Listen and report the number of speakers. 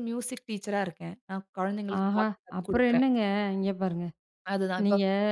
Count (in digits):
2